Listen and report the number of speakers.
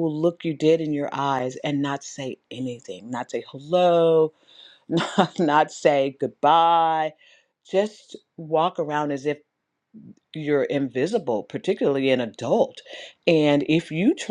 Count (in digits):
1